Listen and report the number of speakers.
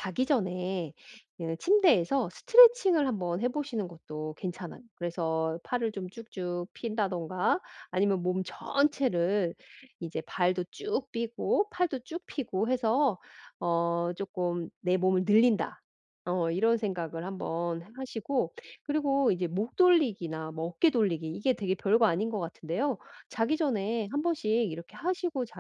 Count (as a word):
one